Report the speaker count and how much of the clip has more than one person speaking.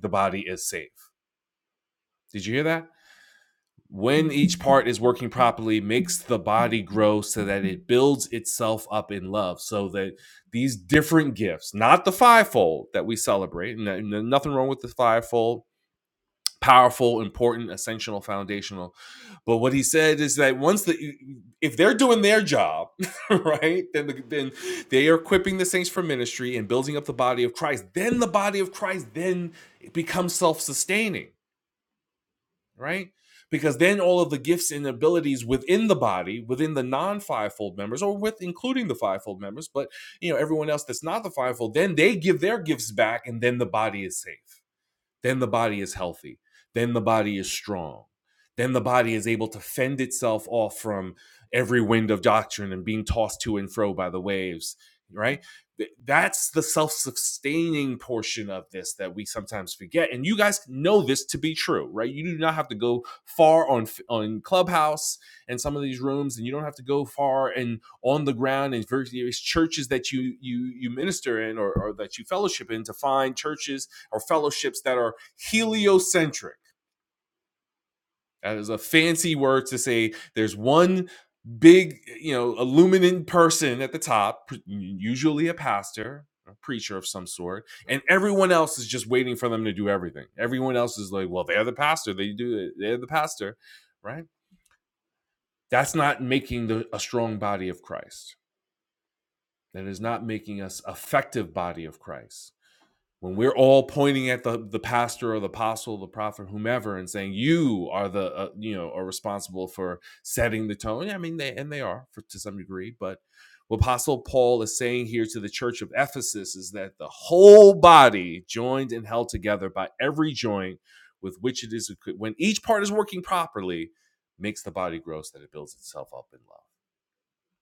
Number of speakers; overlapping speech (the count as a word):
one, no overlap